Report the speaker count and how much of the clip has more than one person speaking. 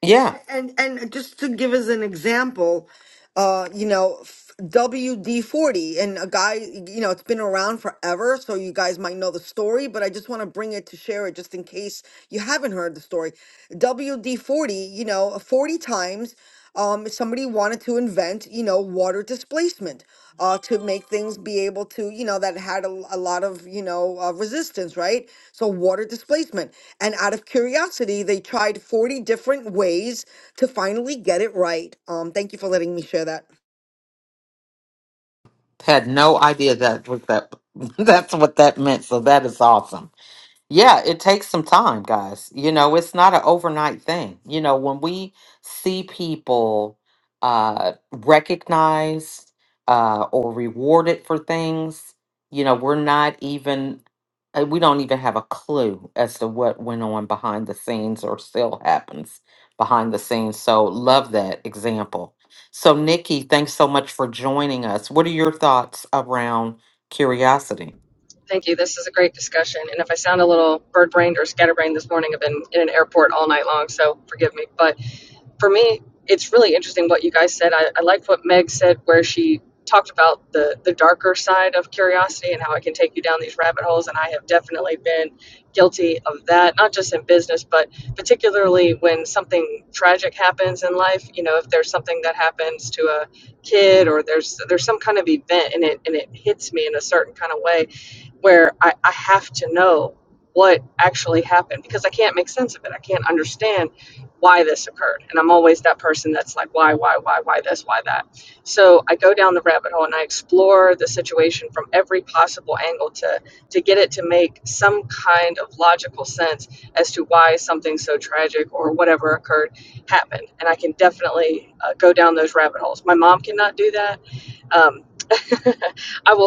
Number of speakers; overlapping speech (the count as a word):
three, no overlap